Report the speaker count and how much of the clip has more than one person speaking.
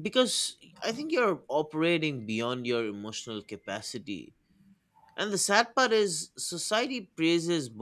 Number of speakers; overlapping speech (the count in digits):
1, no overlap